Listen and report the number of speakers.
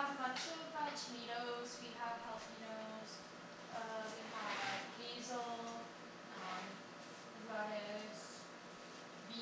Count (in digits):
1